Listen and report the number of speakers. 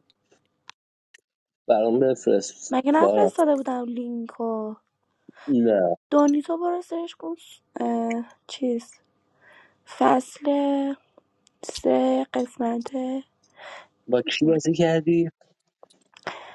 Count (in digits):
2